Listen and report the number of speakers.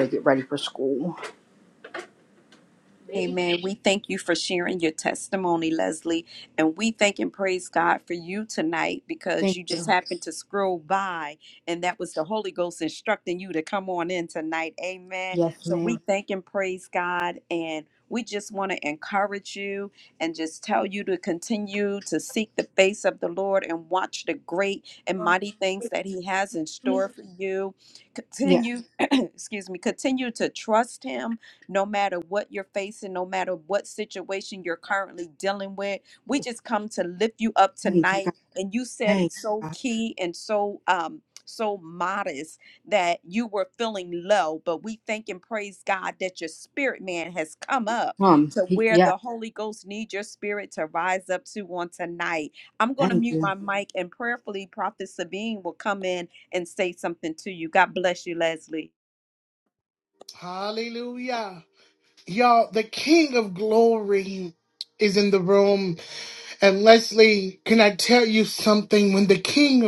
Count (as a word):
three